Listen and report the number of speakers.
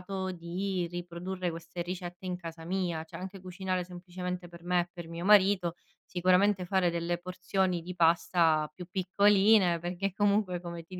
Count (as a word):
one